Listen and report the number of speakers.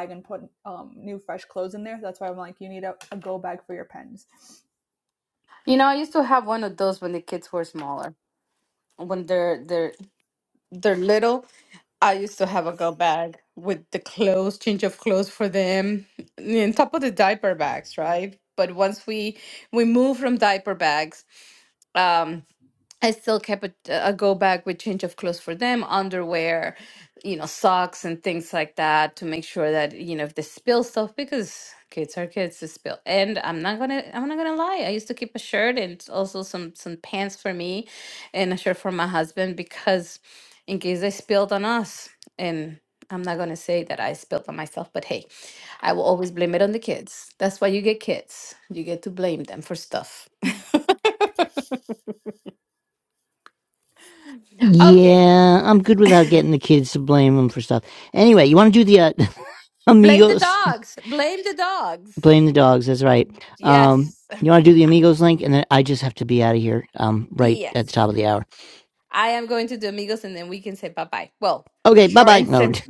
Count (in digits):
3